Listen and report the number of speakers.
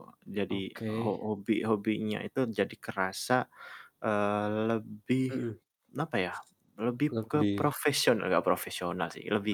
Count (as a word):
two